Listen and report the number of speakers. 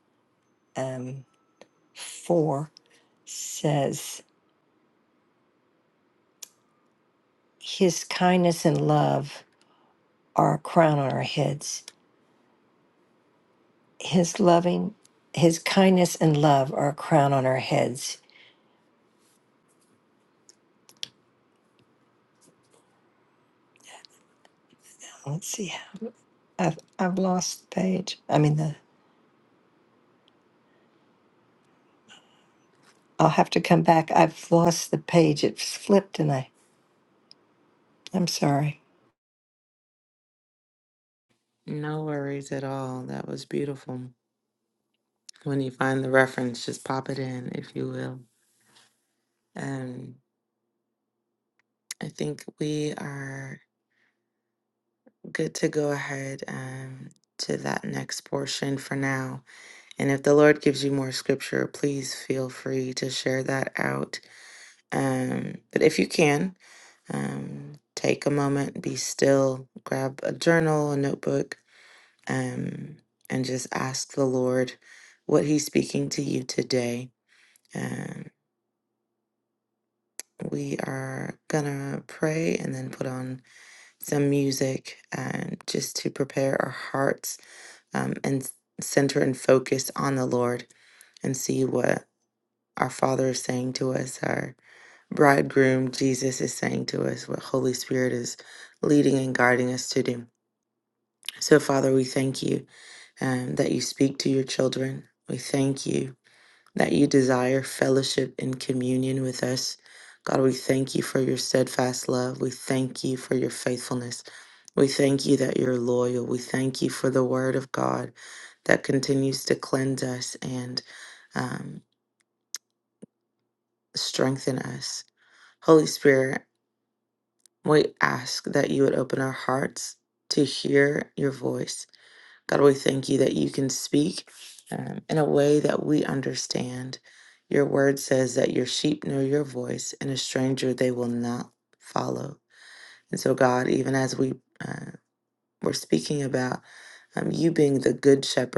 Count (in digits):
2